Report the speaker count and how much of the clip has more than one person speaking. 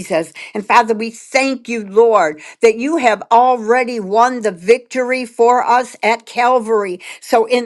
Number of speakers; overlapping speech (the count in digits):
1, no overlap